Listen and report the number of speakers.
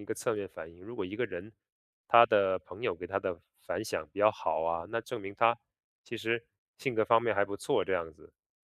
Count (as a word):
one